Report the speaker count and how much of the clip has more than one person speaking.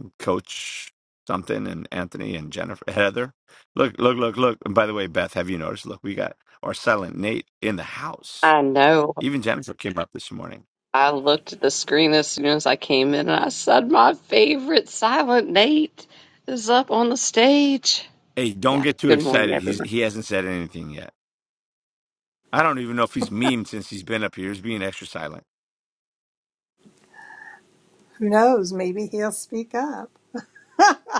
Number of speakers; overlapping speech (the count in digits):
3, about 4%